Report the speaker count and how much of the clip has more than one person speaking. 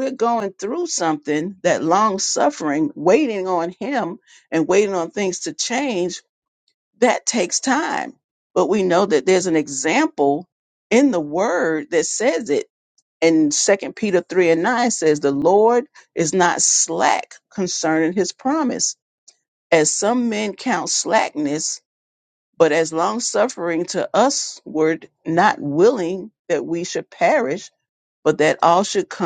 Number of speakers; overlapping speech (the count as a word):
one, no overlap